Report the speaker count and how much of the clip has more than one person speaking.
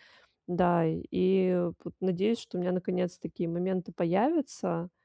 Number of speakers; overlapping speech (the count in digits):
1, no overlap